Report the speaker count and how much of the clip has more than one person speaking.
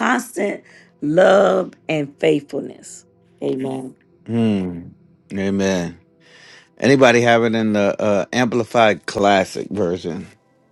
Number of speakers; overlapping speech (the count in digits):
2, no overlap